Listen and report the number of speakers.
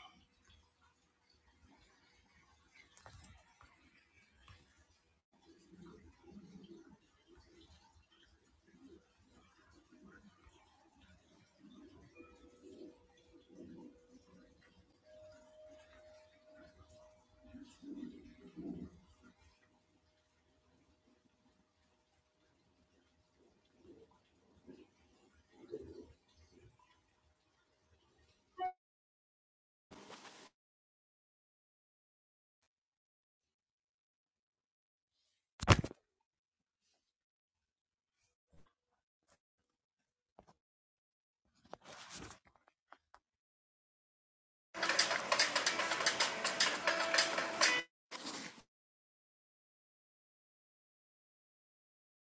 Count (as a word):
zero